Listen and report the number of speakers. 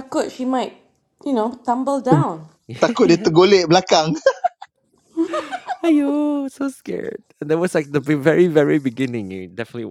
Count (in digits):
3